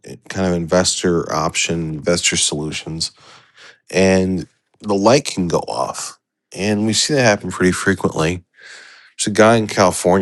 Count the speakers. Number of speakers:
1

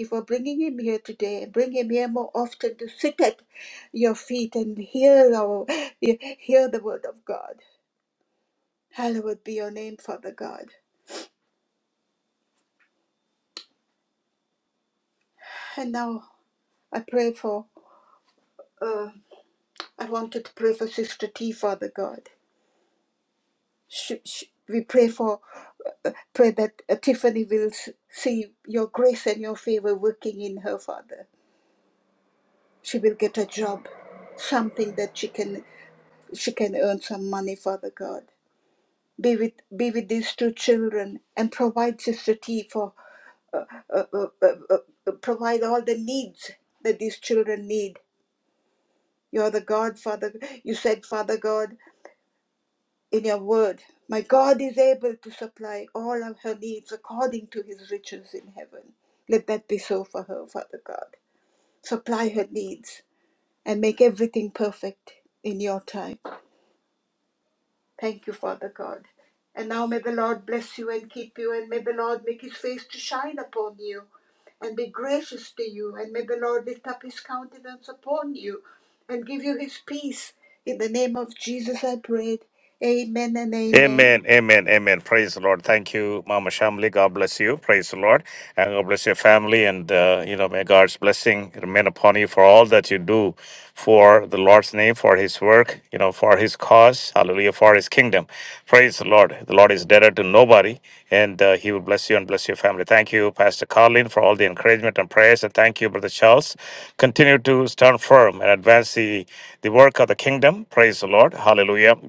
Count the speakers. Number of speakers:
2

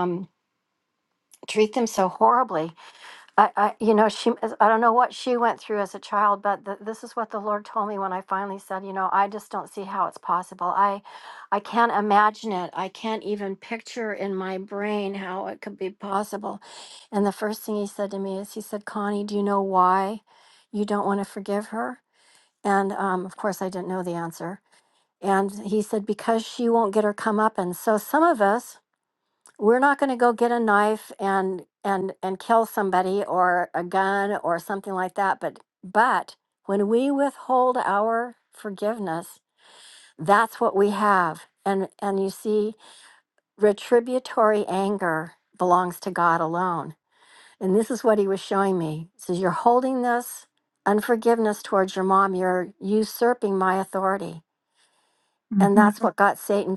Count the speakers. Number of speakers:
1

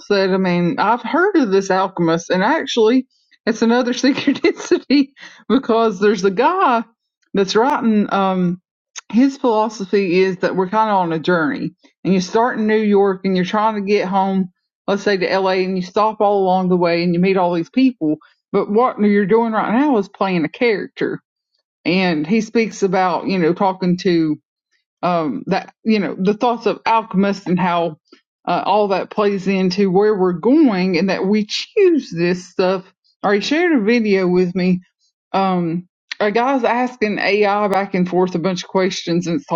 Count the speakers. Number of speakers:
1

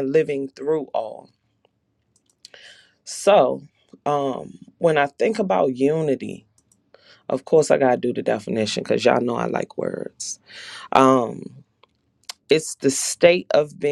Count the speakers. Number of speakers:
1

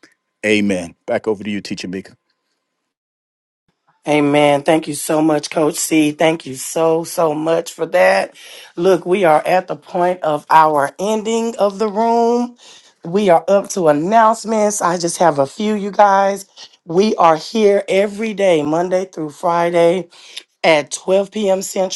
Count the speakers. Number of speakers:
2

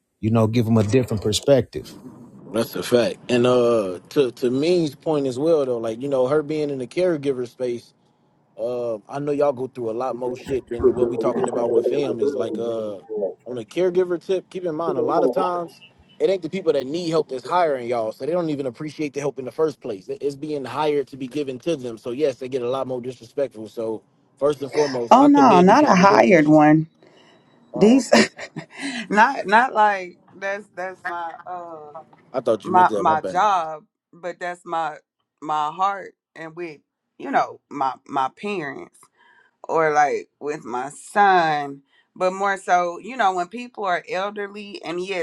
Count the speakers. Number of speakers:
3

